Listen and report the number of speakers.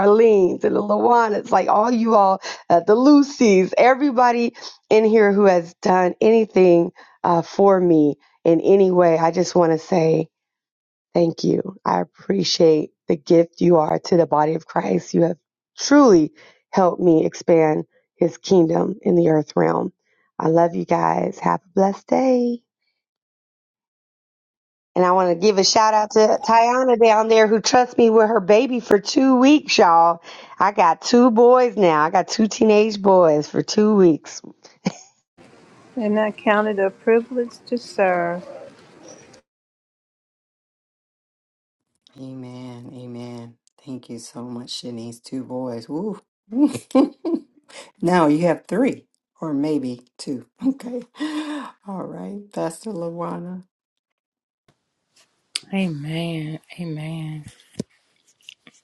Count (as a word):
four